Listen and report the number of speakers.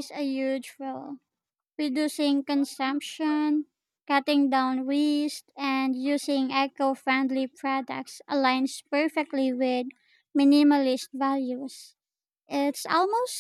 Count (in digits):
1